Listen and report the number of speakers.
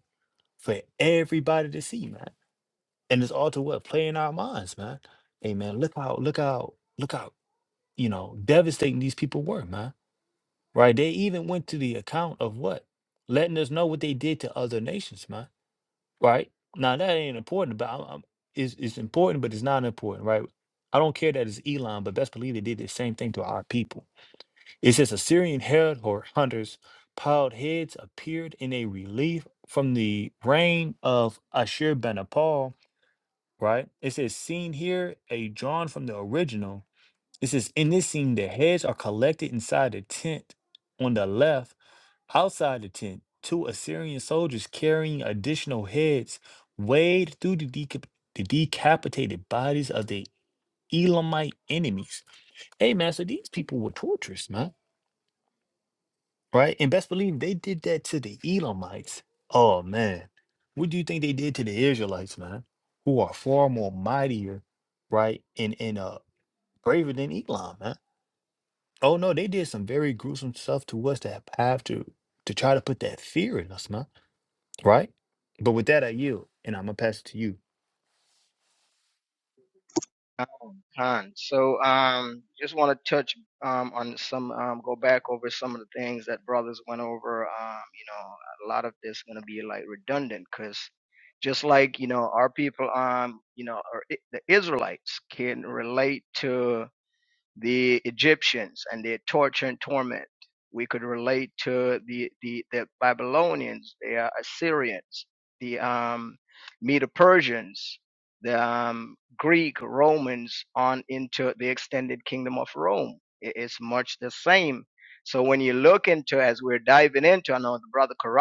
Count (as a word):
two